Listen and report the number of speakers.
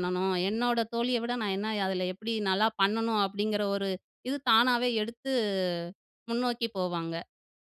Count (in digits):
1